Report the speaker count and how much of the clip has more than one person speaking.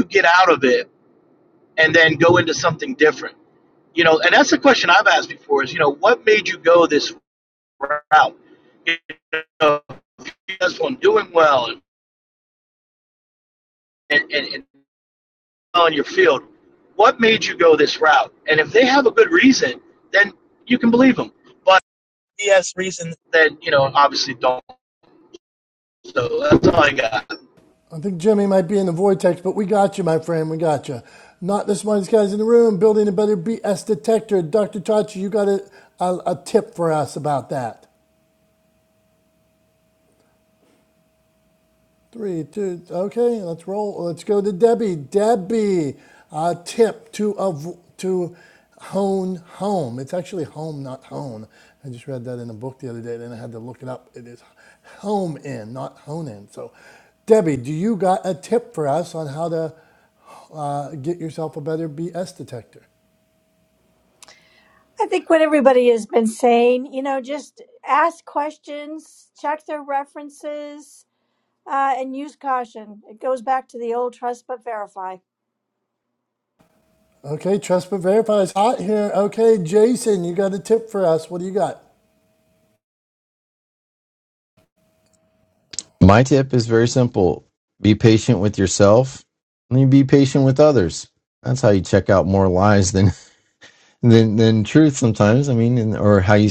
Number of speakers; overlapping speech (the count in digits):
4, no overlap